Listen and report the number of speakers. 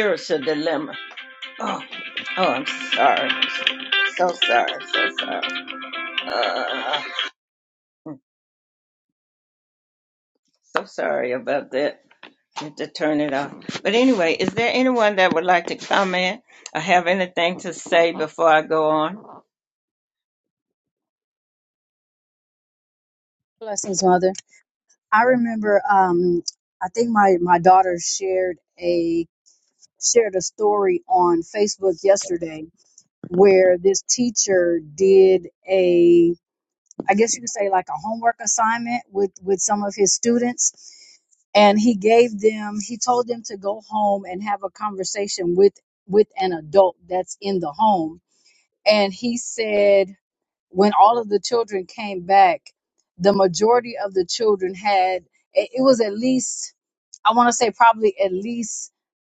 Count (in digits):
2